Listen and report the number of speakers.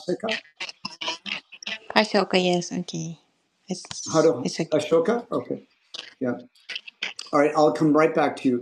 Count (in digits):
2